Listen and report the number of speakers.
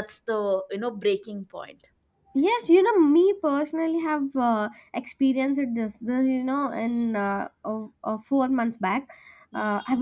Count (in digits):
2